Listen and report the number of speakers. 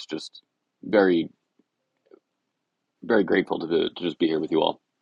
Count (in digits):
1